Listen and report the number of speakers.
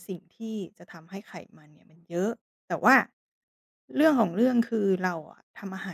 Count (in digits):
1